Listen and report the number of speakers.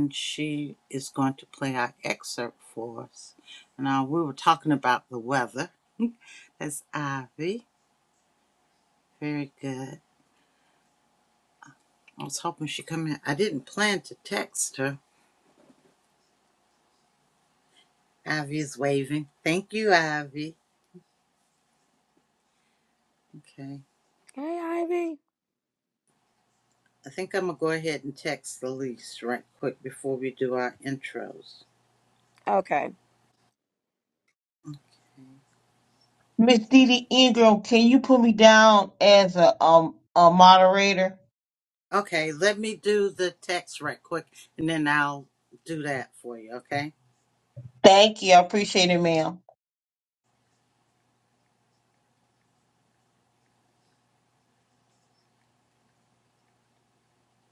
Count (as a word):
three